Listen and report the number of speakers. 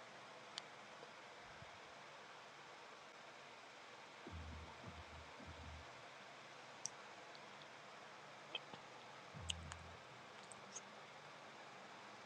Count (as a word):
zero